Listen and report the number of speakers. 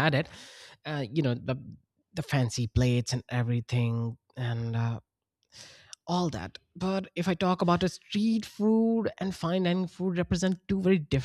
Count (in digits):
1